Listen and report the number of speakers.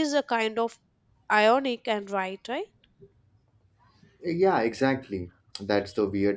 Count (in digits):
2